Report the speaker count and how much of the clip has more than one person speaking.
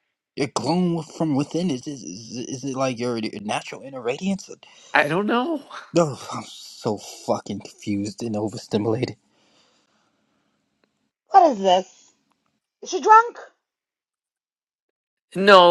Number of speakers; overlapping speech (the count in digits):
3, no overlap